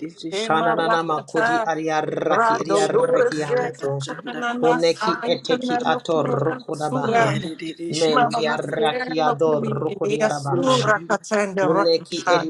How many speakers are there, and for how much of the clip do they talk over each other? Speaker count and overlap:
3, about 78%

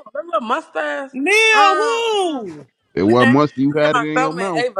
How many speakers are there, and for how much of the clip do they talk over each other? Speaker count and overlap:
3, about 33%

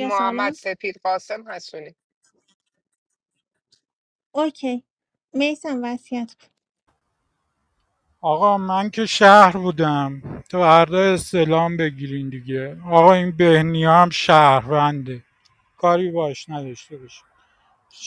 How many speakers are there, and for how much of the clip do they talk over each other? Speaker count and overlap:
3, about 3%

